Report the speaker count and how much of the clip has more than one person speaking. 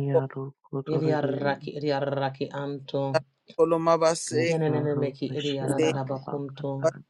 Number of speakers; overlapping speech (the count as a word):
three, about 46%